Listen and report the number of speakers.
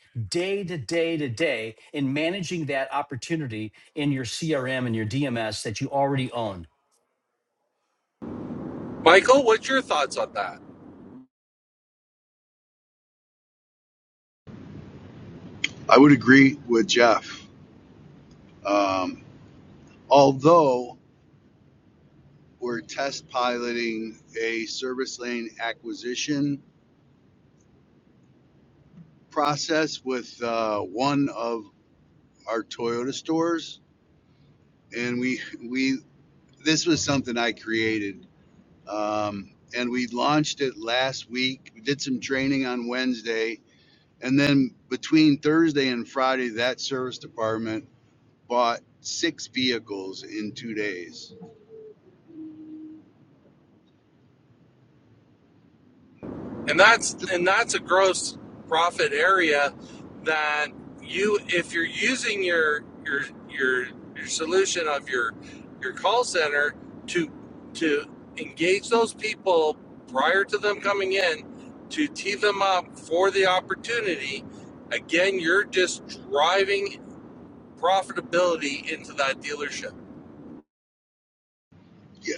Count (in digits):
3